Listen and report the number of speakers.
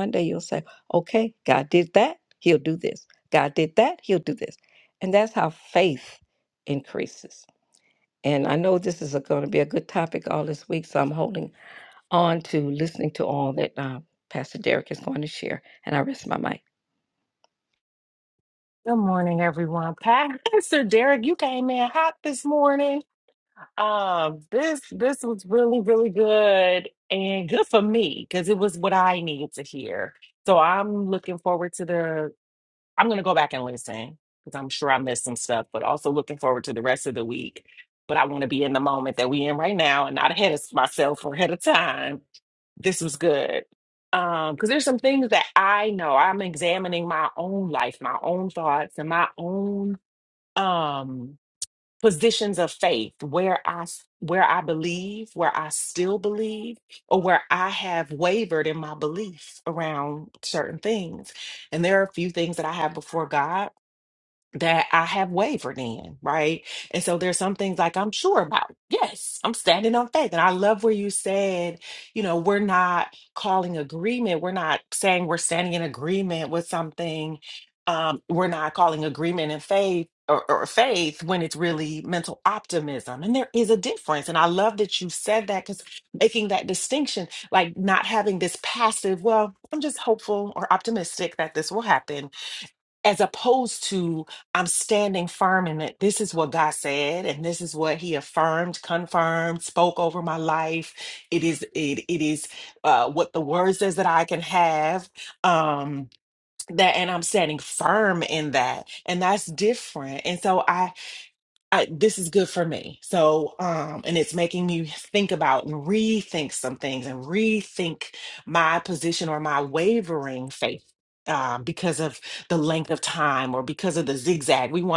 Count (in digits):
2